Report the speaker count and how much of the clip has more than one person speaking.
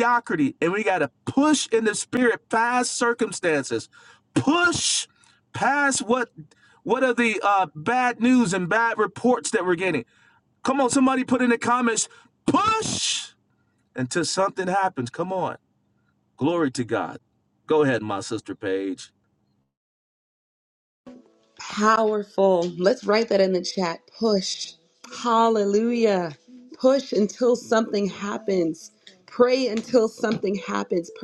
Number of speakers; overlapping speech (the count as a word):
two, no overlap